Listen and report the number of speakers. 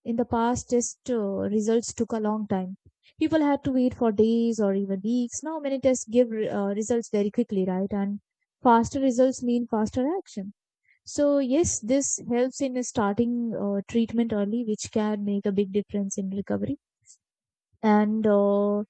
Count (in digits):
1